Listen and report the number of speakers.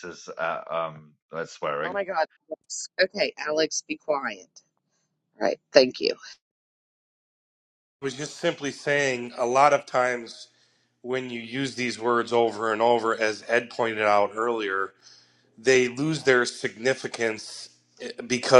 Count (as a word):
three